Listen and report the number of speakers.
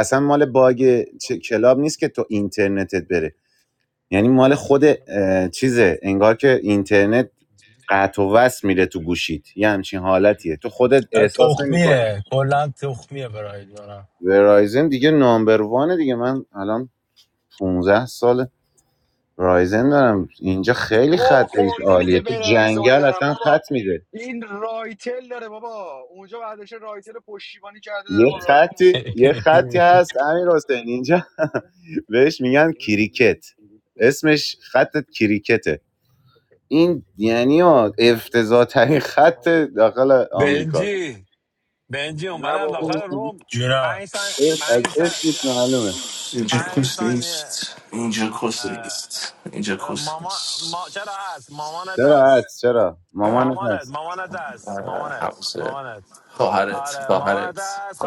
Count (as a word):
five